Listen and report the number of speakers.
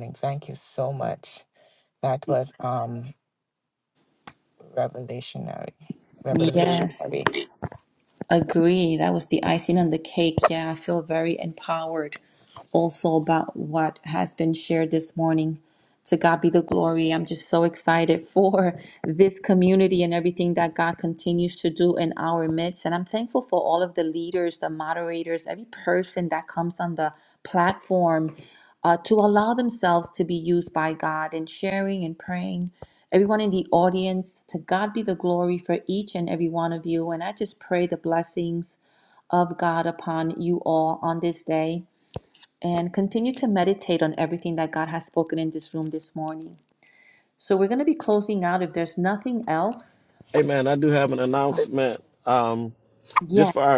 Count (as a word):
three